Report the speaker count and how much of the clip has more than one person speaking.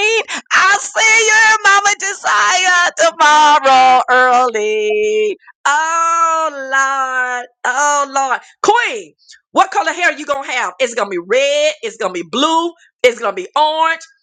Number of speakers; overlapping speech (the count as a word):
one, no overlap